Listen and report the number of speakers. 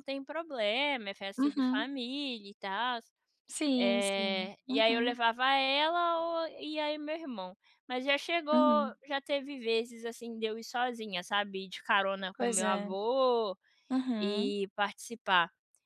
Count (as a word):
two